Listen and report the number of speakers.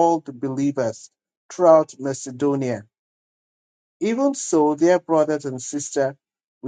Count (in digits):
1